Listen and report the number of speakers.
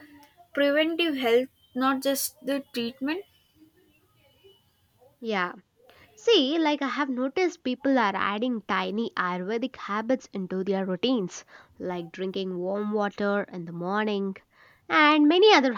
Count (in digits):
2